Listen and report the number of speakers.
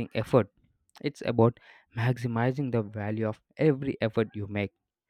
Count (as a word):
one